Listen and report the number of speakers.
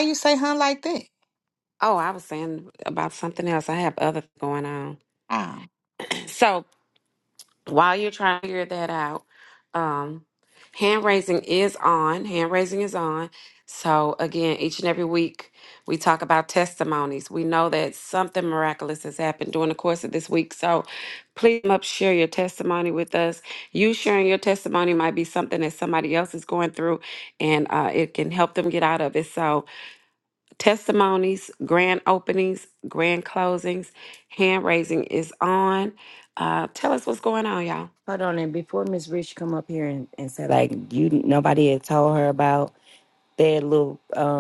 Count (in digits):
3